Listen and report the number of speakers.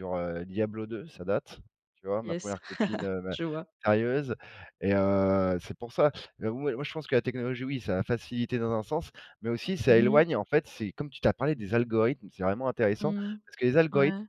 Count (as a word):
two